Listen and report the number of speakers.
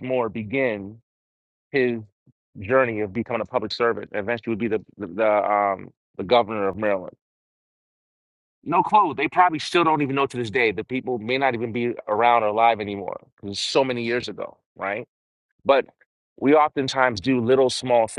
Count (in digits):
1